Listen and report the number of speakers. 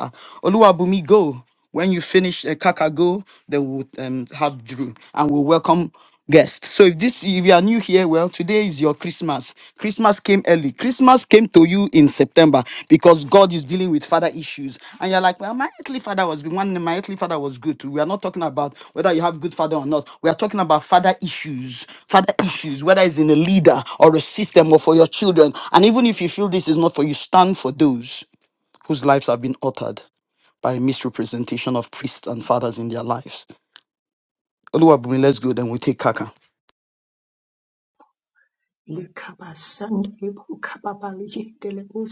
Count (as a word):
two